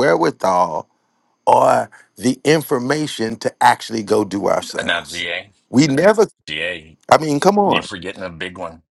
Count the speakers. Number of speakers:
two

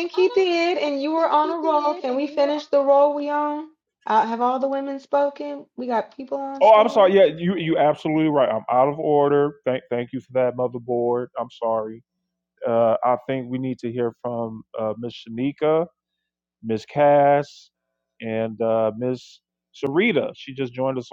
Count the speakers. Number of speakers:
two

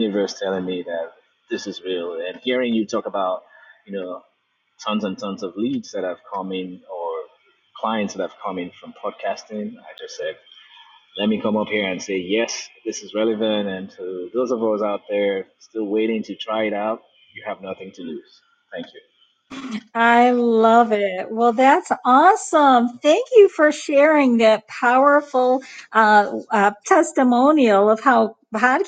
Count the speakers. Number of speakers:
two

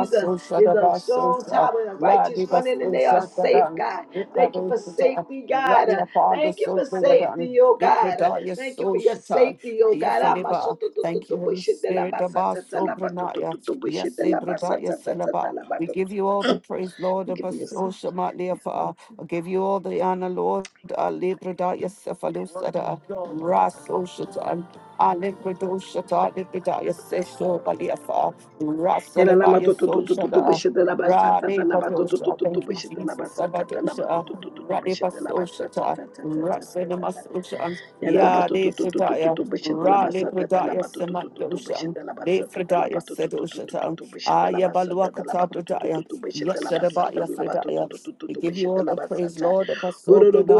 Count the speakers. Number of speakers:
two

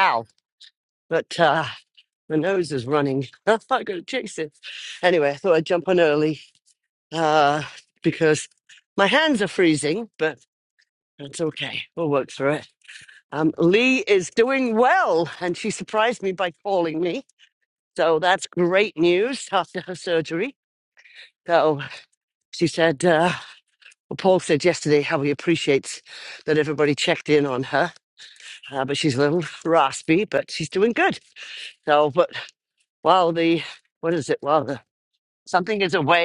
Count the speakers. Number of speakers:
one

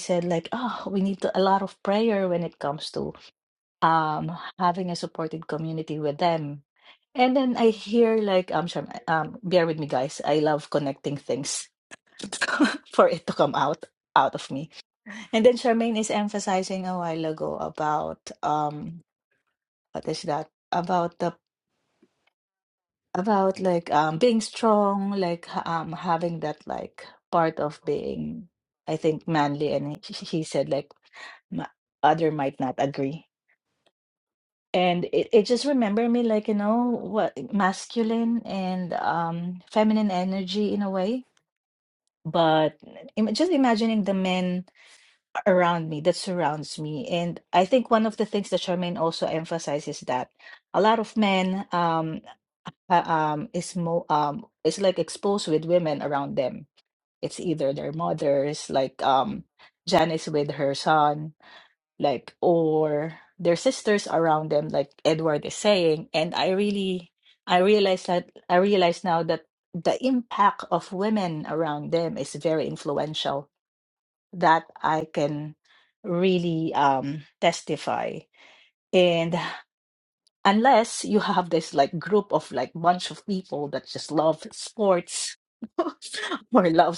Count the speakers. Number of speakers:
one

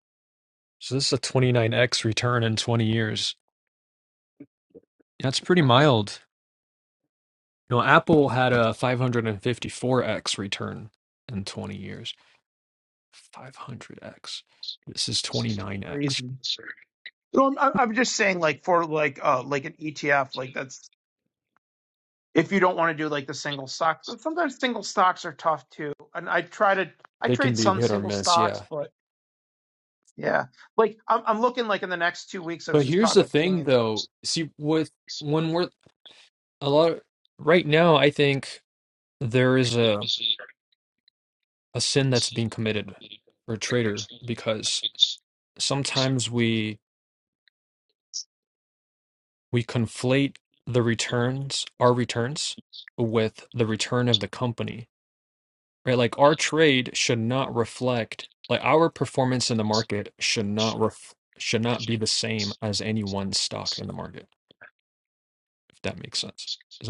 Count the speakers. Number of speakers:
two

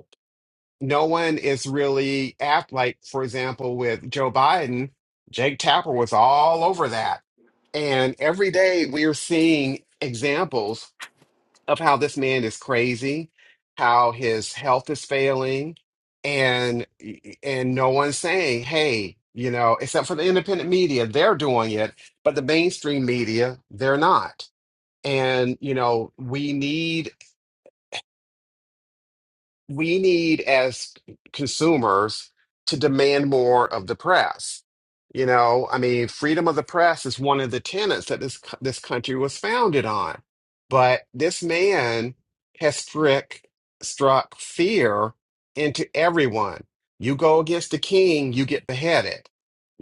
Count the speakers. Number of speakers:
one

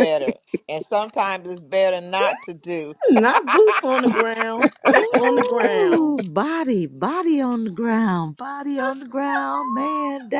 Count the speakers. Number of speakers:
three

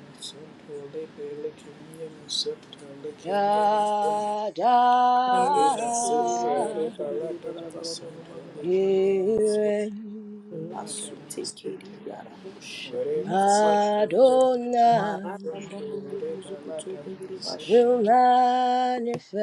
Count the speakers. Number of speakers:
three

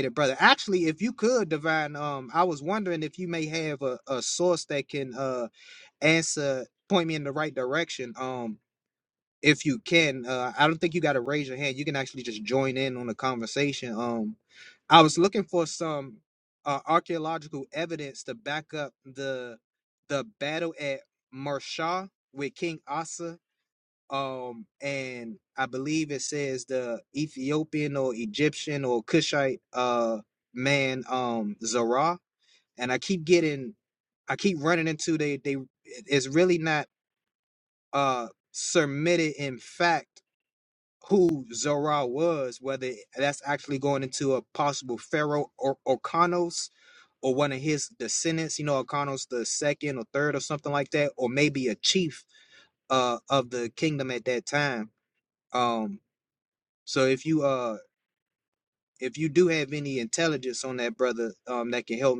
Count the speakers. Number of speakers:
one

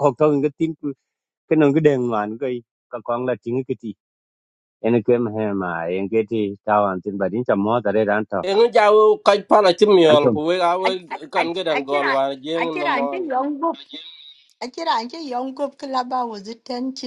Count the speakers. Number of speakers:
three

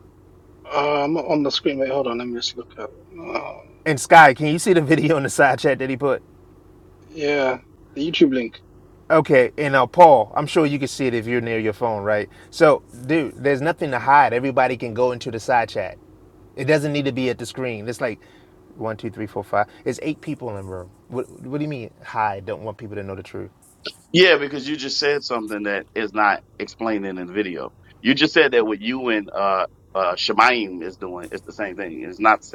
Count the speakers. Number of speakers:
three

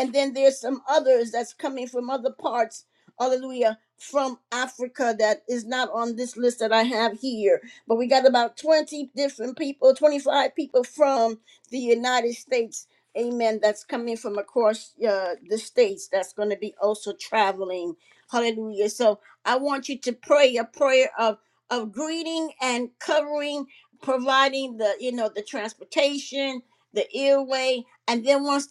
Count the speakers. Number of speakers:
one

